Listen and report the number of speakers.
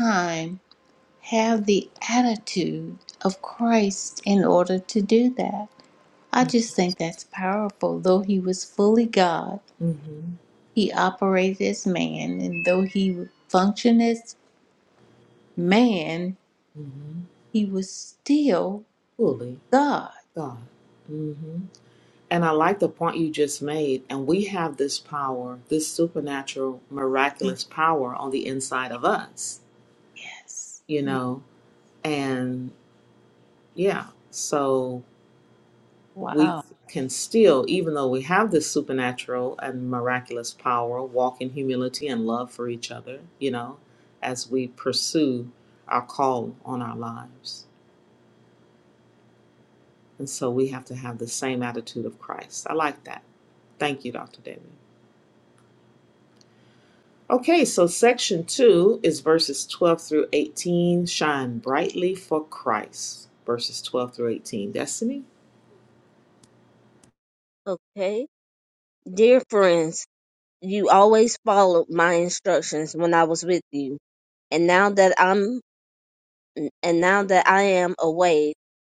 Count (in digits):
3